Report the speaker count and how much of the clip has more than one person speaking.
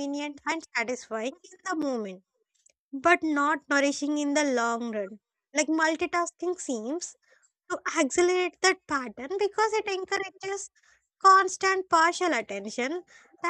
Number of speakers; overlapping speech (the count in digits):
1, no overlap